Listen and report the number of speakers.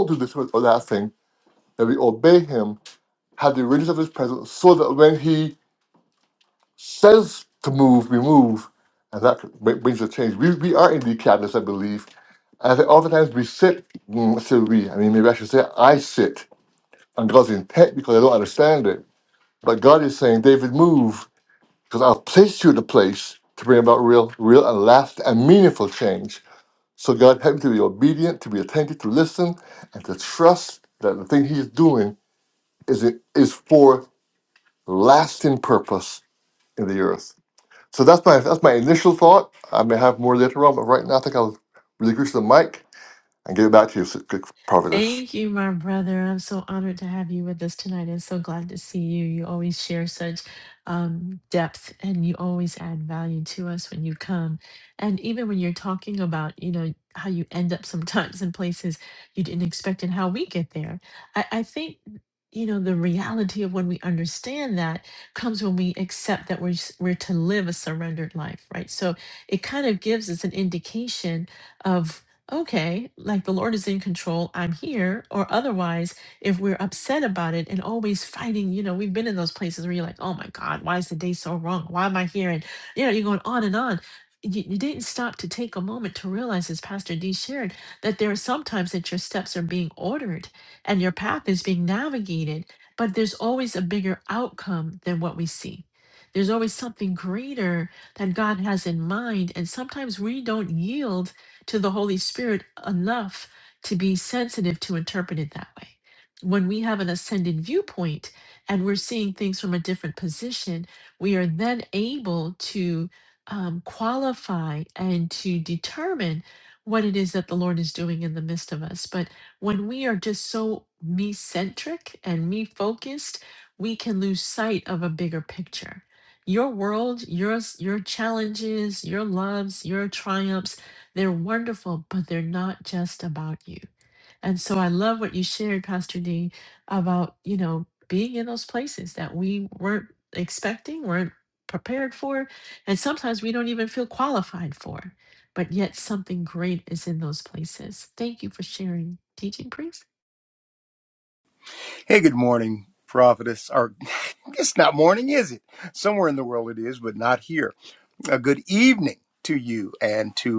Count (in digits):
3